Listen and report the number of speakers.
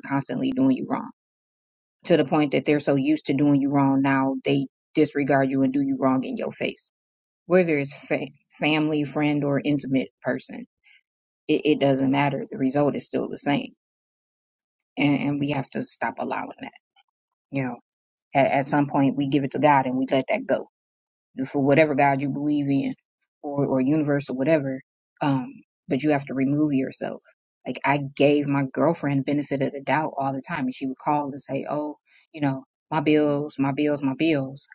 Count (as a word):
one